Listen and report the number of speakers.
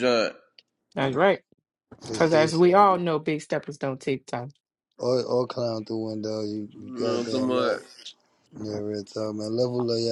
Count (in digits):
3